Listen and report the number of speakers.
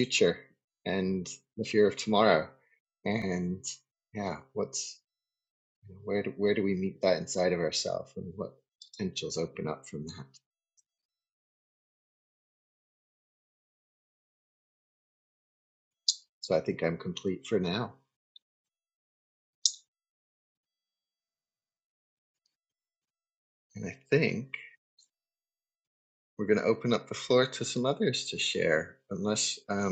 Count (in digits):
1